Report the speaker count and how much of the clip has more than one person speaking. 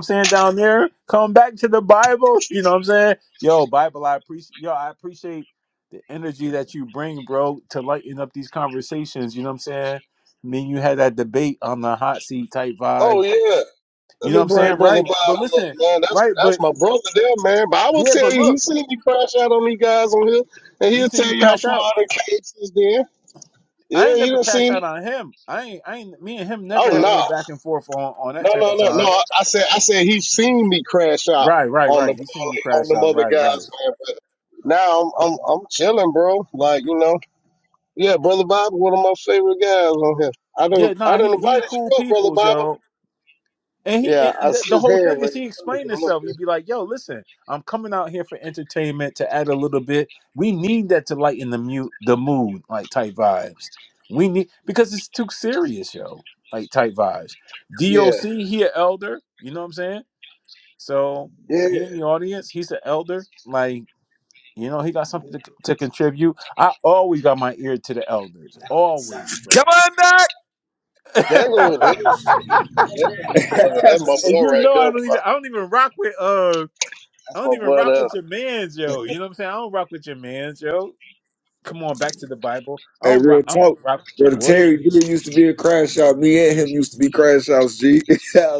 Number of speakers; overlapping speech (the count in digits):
3, about 17%